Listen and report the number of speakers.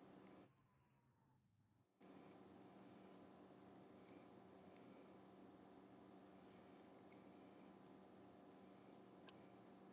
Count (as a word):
zero